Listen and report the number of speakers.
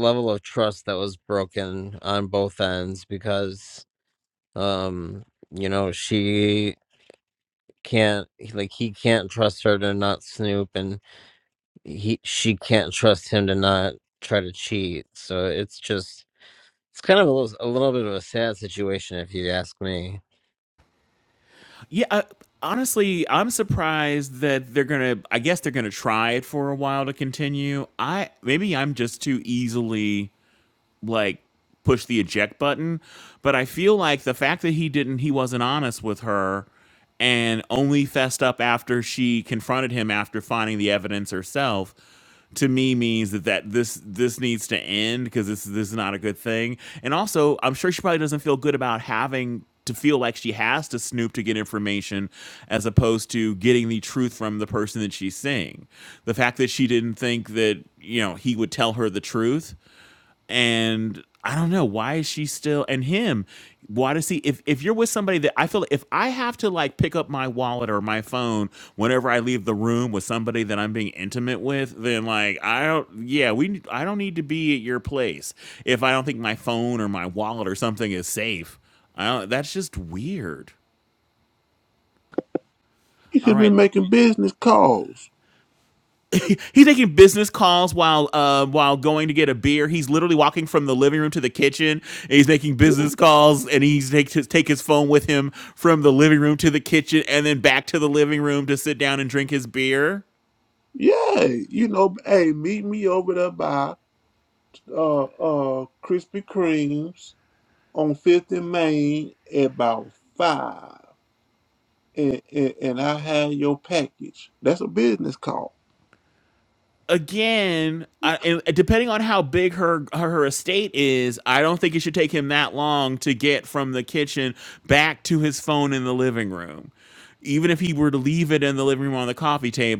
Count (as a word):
three